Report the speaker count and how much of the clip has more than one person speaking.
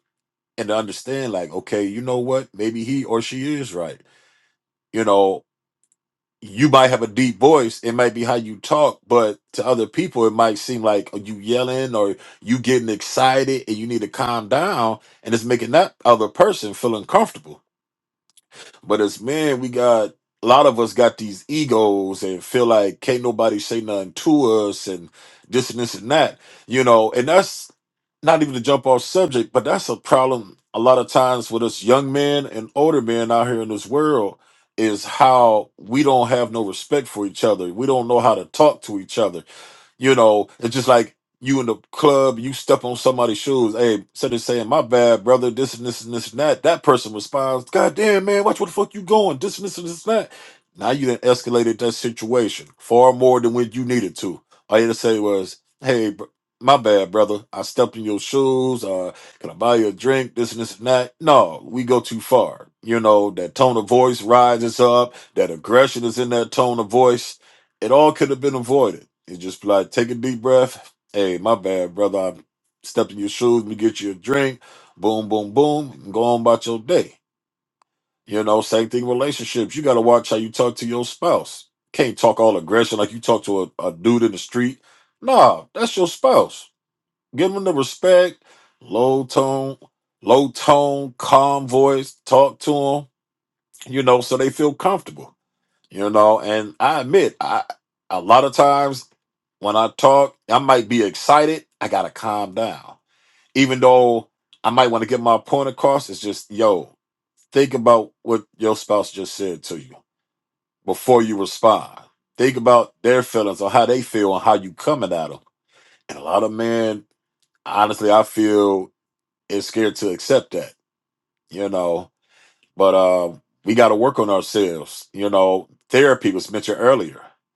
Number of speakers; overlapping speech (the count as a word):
one, no overlap